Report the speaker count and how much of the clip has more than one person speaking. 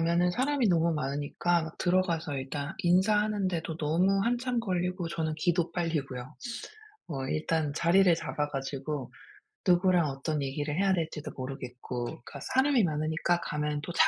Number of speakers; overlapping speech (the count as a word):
one, no overlap